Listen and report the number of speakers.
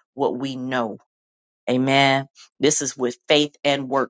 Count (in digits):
1